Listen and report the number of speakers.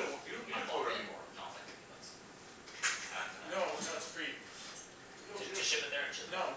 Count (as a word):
three